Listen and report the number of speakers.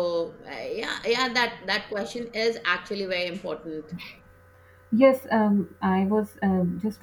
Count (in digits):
2